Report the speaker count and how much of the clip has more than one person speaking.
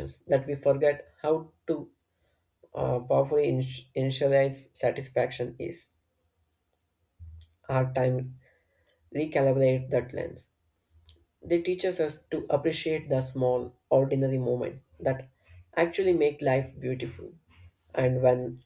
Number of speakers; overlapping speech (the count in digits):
1, no overlap